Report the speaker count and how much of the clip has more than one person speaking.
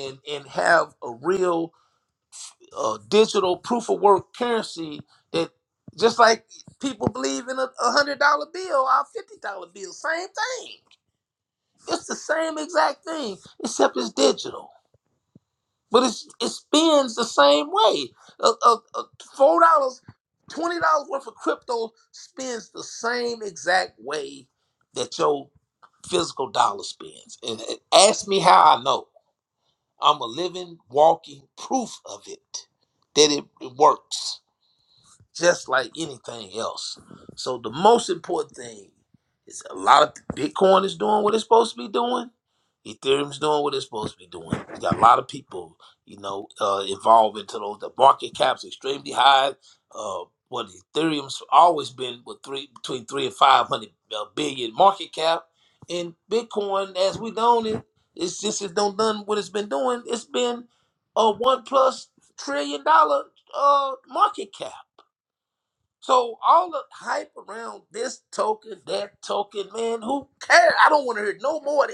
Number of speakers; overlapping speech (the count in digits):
1, no overlap